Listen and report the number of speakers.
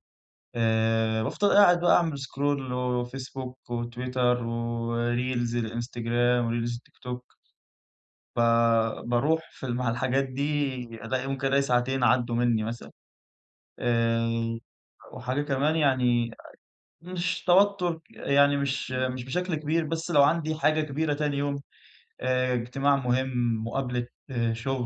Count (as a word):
one